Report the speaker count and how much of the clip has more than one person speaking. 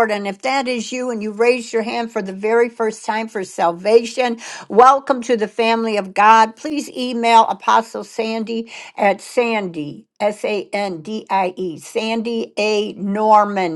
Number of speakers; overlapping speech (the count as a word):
one, no overlap